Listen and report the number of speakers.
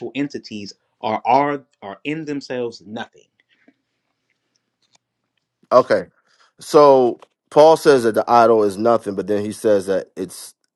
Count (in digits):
2